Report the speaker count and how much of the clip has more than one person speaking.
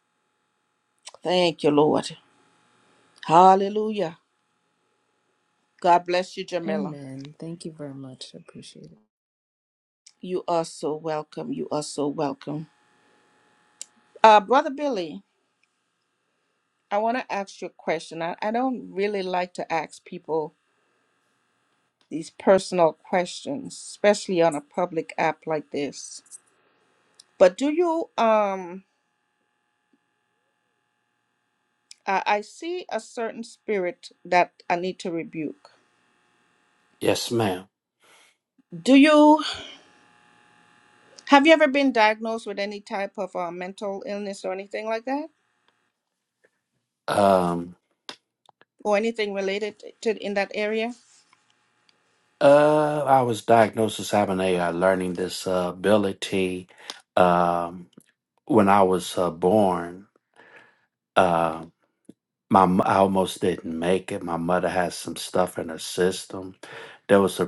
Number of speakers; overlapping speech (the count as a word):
three, under 1%